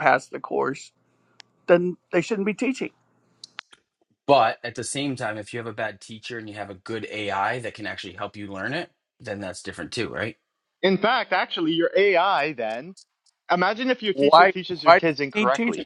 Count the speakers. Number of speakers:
3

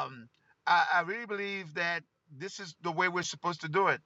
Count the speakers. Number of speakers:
1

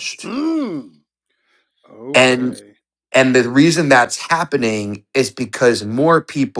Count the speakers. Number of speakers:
2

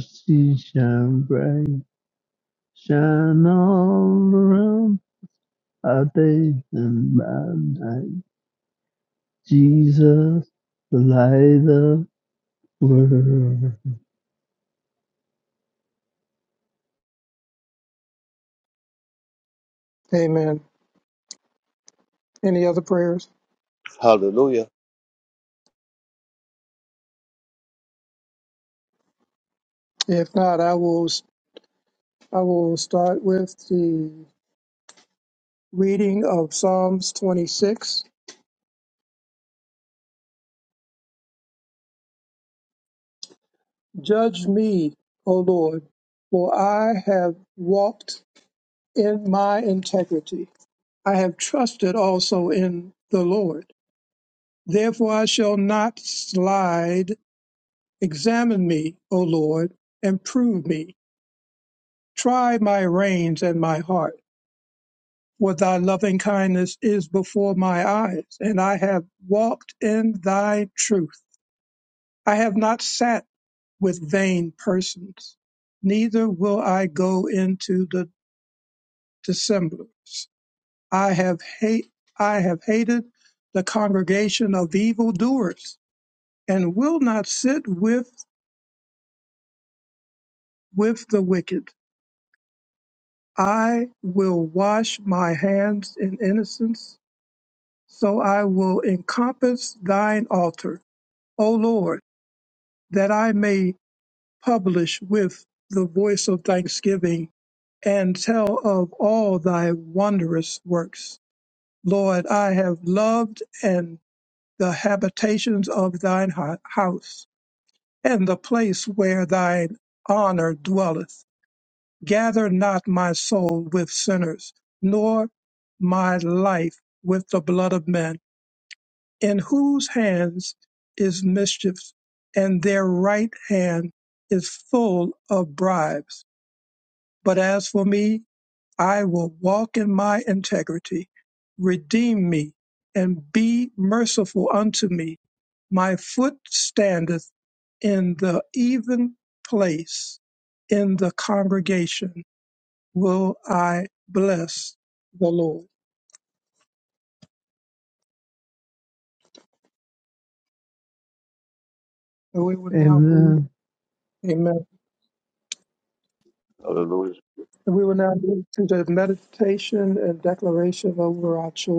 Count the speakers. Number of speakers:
3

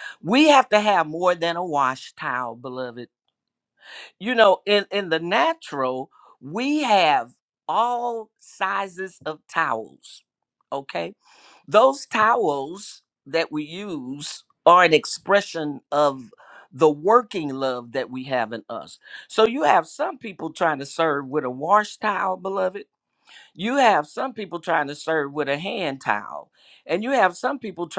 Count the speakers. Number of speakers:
1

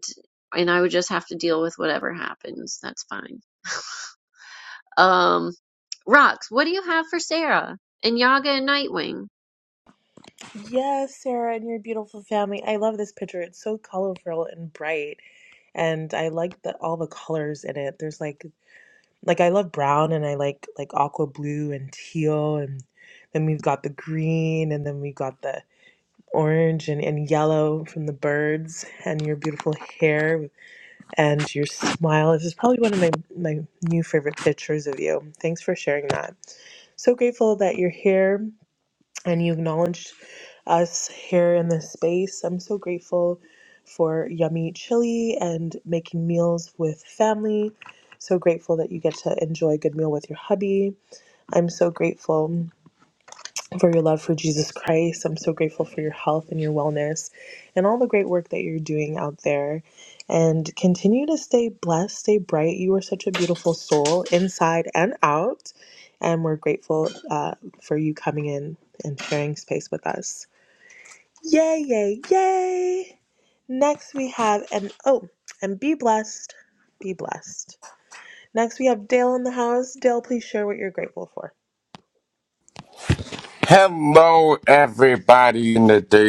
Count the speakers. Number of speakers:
3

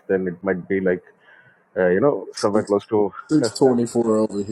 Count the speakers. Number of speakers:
2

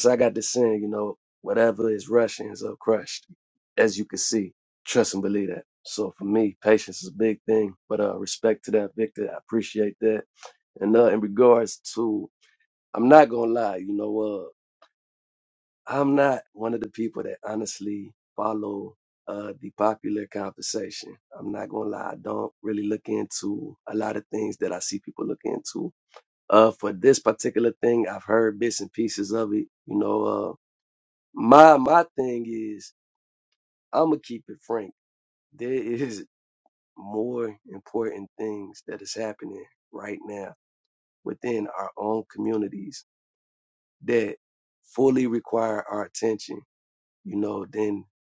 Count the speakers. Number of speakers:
1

